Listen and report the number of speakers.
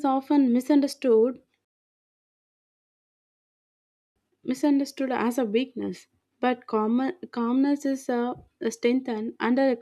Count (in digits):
1